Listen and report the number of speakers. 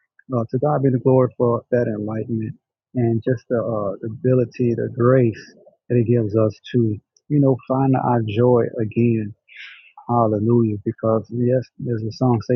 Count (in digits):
1